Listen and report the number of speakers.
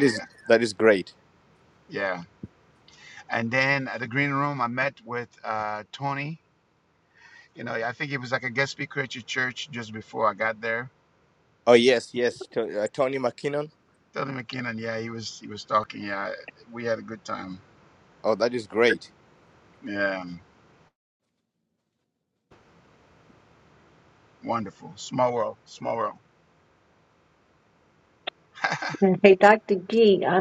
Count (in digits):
3